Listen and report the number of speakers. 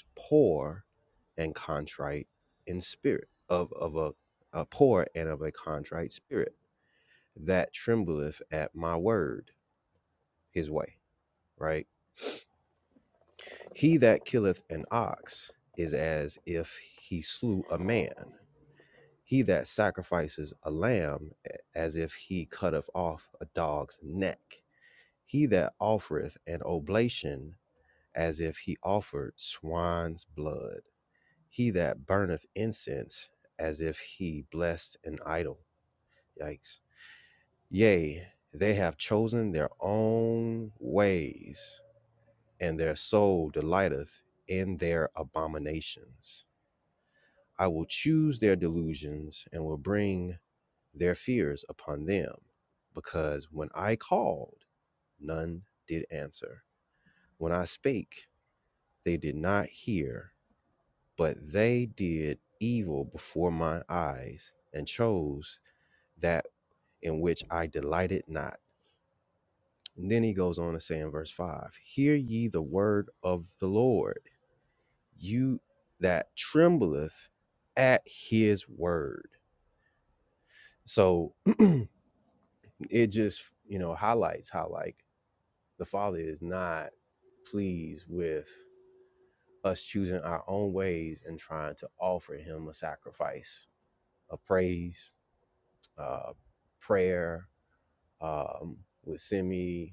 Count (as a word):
one